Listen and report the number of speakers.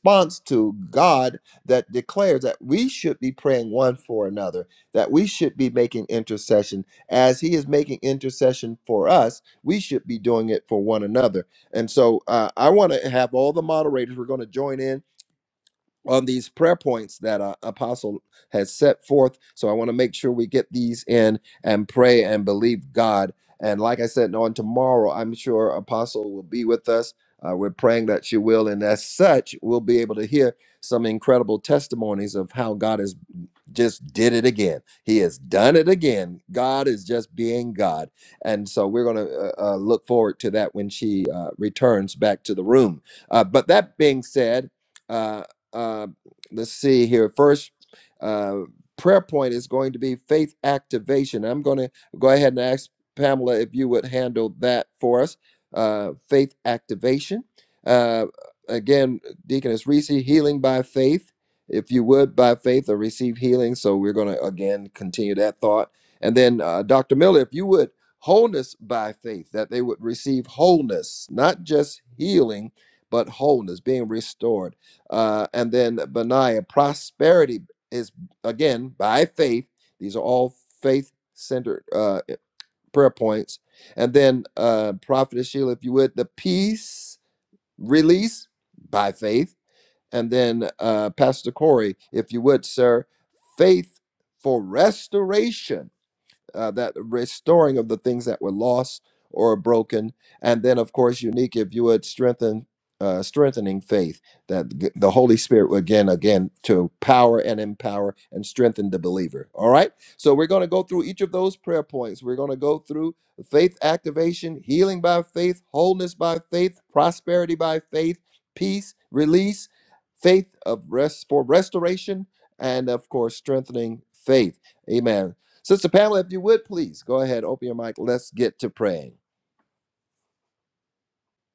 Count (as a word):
one